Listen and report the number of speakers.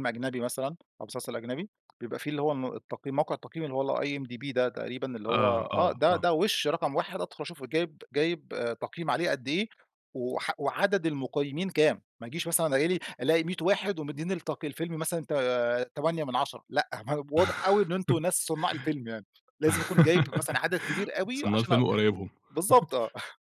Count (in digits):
2